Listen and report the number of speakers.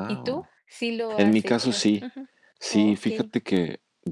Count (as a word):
two